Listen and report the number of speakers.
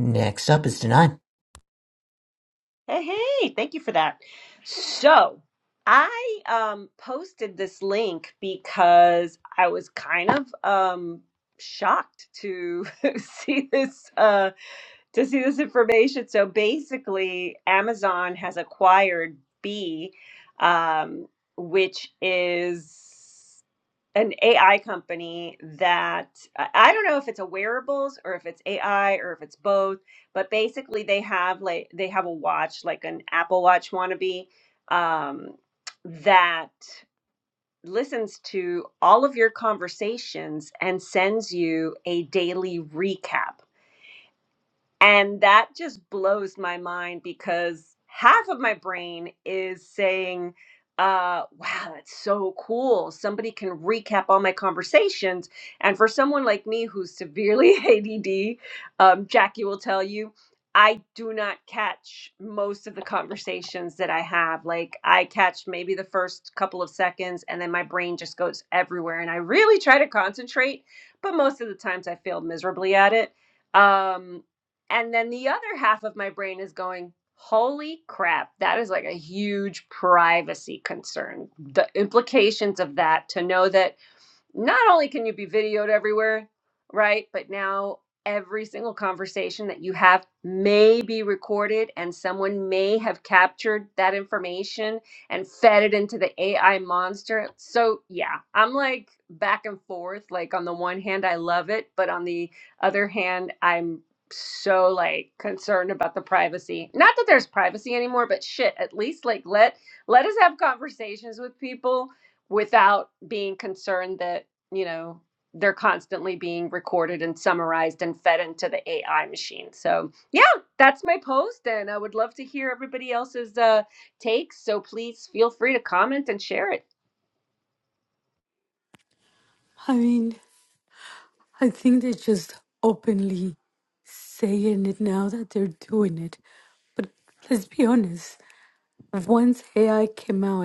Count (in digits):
3